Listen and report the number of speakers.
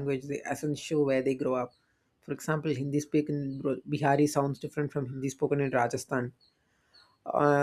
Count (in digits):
1